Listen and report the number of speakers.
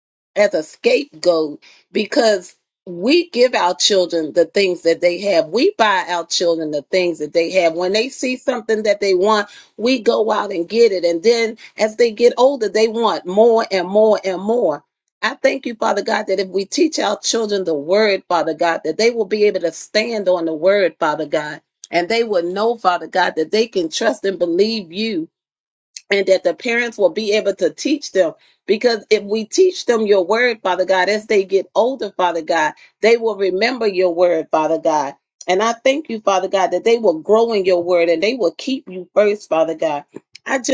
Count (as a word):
one